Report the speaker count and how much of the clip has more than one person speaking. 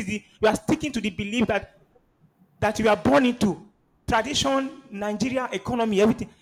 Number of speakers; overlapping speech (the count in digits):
1, no overlap